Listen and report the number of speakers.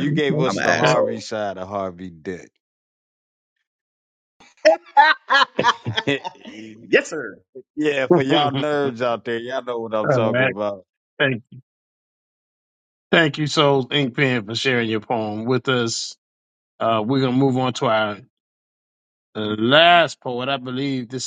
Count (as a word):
three